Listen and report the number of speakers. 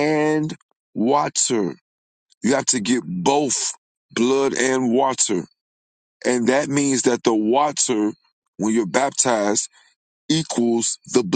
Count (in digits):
1